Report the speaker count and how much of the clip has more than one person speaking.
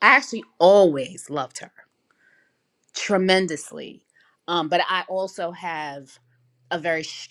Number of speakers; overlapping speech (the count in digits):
1, no overlap